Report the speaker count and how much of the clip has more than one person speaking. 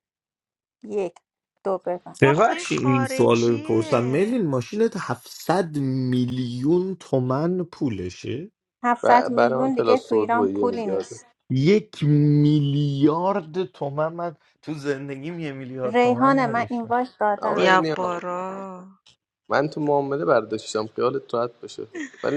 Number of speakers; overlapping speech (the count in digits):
4, about 23%